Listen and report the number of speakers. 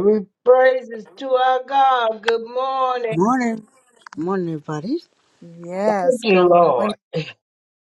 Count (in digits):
3